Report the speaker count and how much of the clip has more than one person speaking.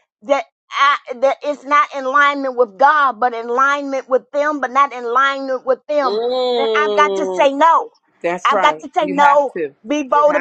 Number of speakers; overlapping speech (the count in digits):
2, about 19%